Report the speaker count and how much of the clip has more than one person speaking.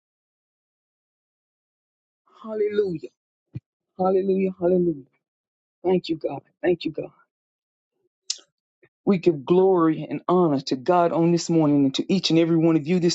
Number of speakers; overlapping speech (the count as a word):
one, no overlap